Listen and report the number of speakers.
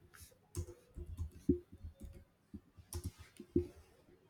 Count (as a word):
zero